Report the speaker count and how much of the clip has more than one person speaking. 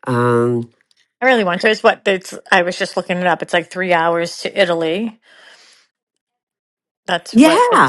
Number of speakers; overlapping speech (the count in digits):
2, about 7%